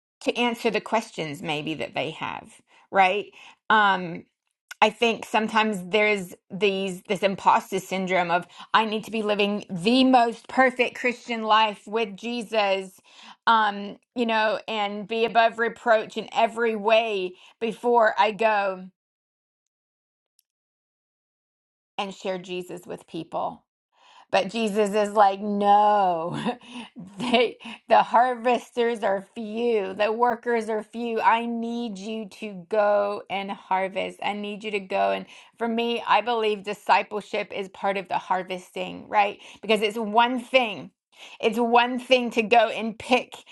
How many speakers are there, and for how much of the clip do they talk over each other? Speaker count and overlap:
one, no overlap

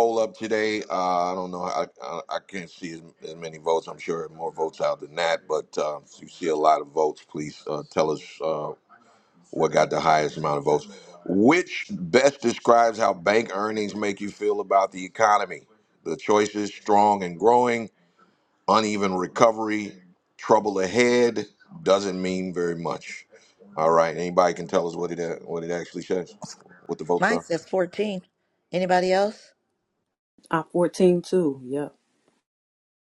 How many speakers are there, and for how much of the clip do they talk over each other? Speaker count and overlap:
three, about 1%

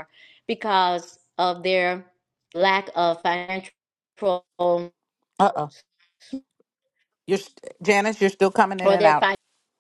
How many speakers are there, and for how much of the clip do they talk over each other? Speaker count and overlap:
two, about 3%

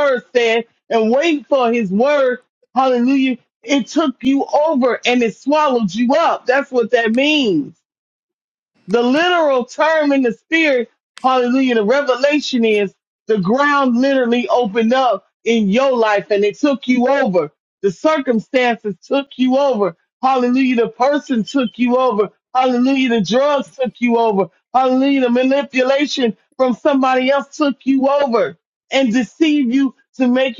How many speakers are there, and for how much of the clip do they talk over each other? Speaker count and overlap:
one, no overlap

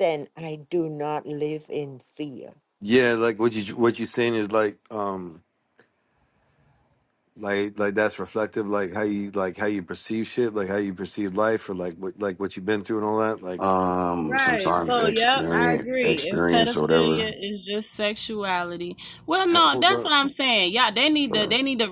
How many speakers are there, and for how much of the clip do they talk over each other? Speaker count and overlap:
four, about 17%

